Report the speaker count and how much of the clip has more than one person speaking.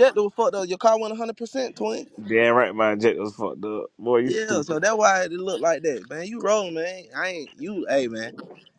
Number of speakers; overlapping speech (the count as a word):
two, about 7%